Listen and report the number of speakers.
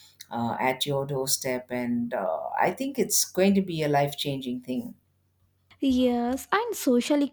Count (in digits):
2